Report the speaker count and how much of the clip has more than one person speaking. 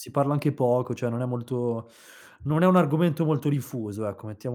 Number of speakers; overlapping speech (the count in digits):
1, no overlap